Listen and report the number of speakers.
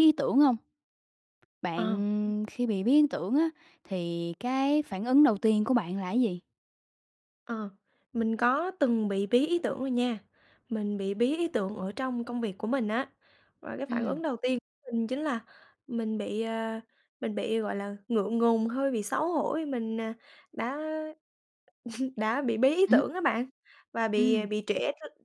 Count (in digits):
2